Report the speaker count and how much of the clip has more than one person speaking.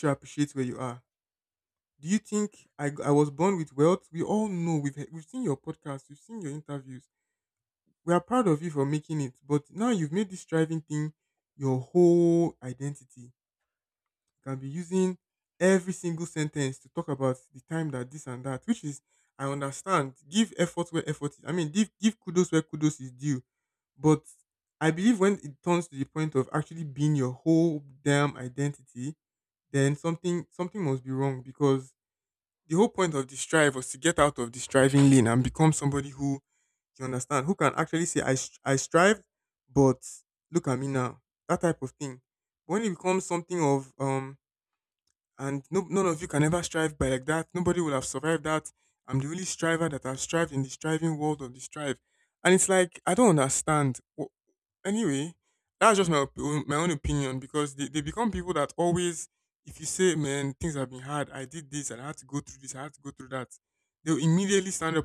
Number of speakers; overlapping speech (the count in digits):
1, no overlap